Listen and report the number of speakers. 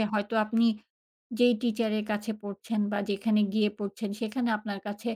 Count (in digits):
1